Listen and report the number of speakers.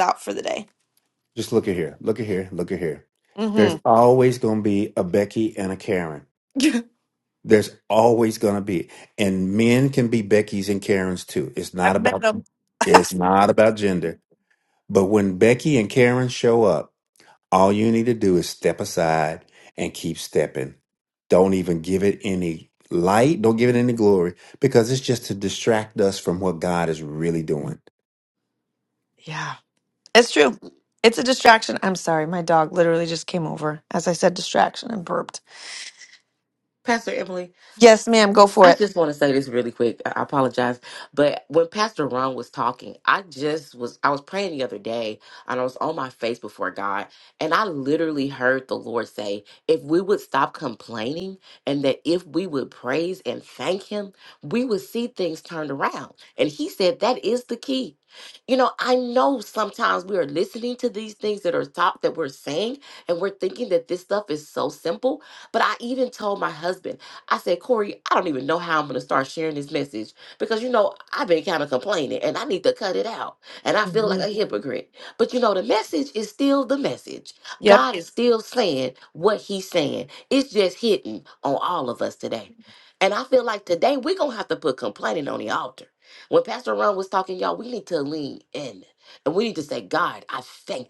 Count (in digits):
3